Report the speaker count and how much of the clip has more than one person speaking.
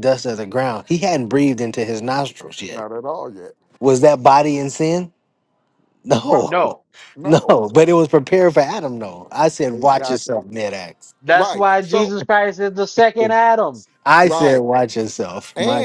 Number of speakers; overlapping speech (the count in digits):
3, about 20%